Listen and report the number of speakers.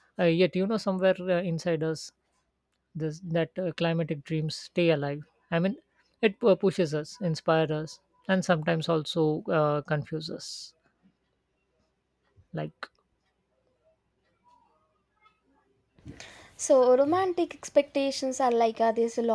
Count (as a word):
two